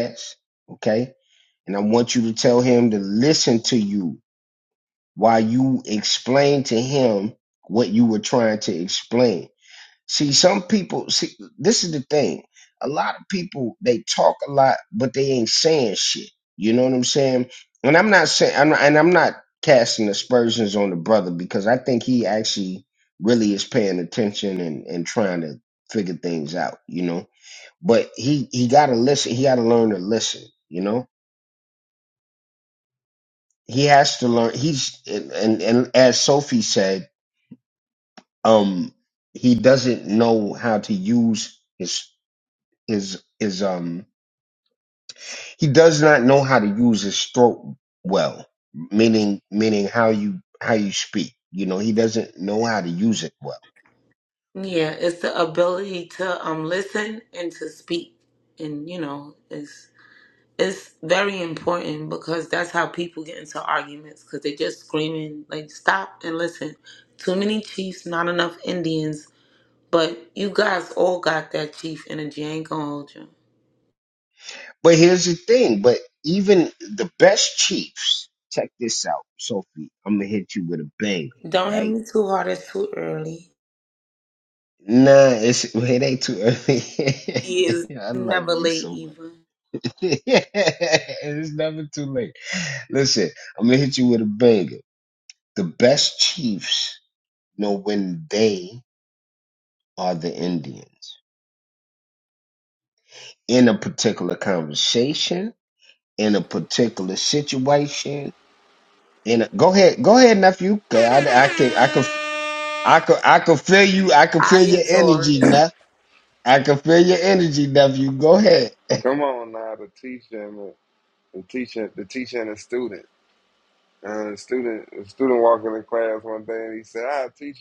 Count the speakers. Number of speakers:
three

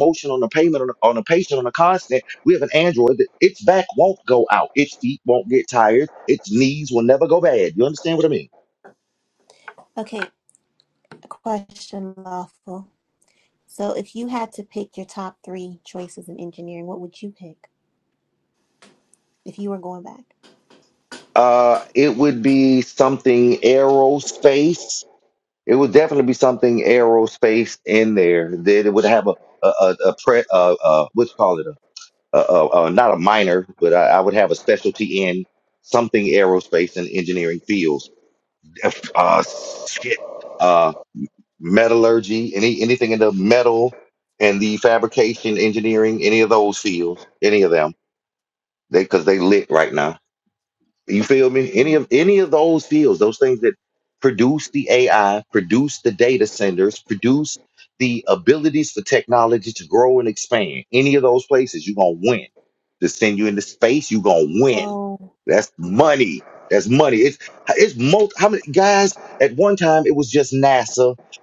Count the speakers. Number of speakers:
two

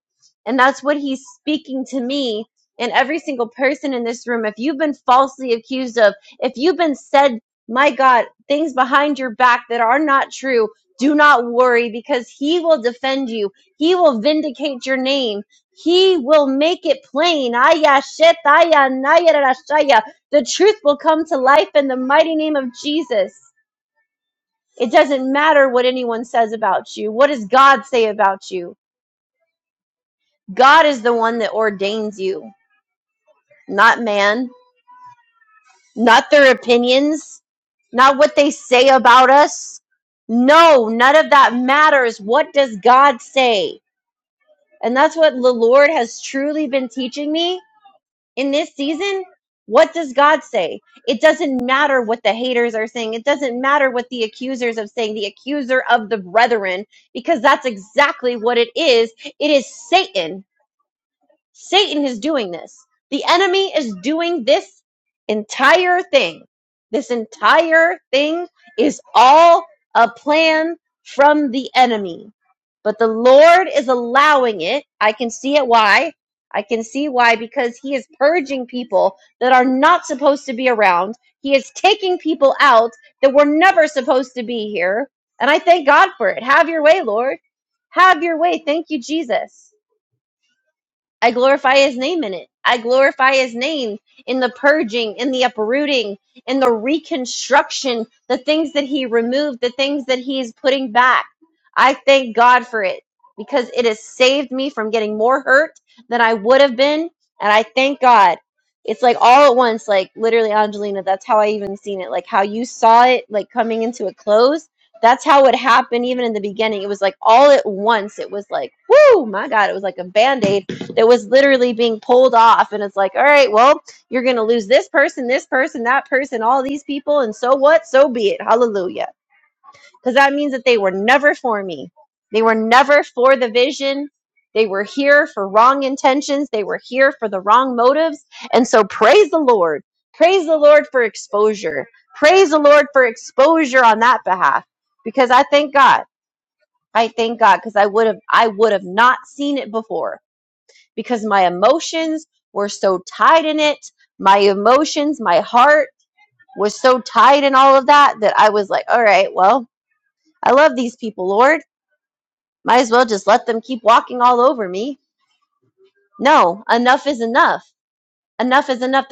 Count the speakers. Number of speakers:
one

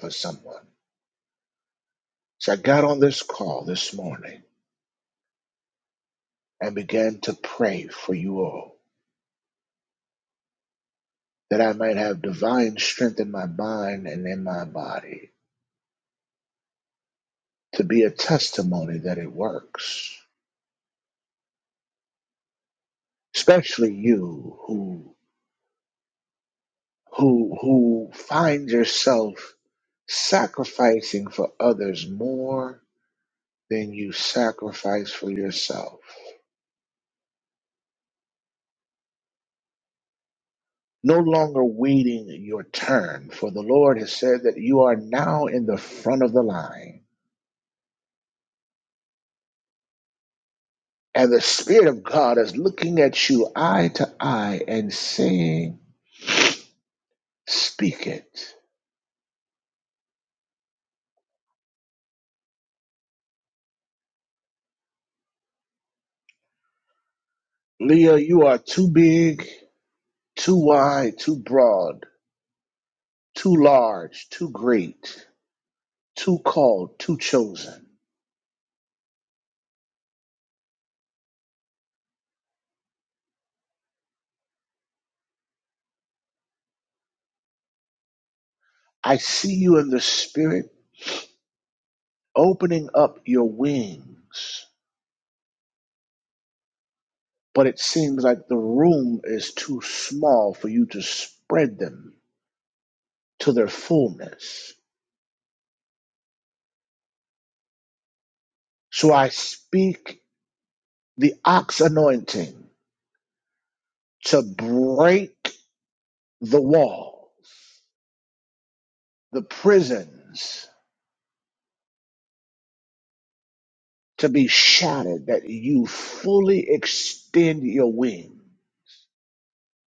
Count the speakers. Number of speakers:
one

